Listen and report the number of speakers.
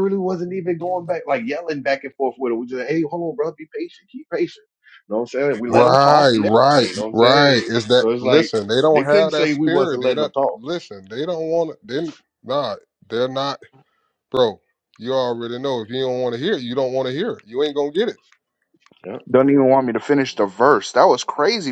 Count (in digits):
3